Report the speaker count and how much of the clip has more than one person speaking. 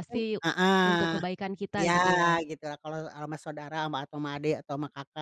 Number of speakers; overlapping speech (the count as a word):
two, about 16%